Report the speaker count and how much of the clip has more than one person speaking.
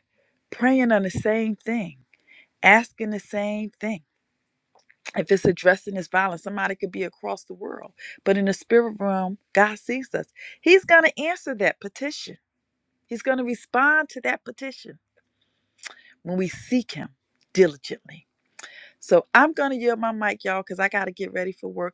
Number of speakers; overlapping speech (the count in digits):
1, no overlap